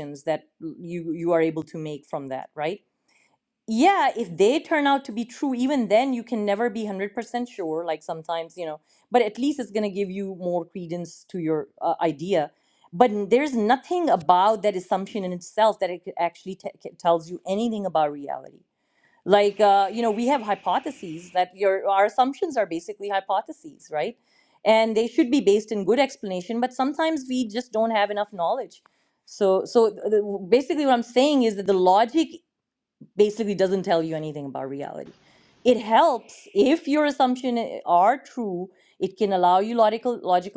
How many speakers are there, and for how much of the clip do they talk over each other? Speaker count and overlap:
1, no overlap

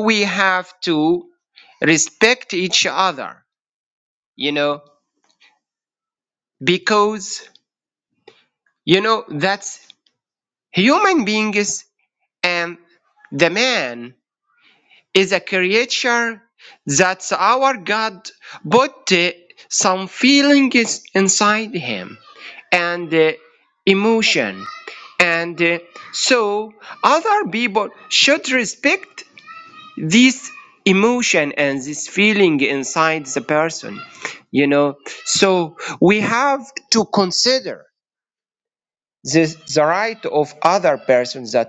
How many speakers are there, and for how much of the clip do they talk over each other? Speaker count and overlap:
1, no overlap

